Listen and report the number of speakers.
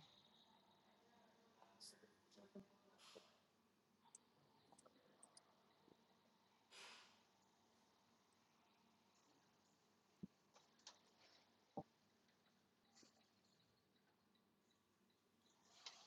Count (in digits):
0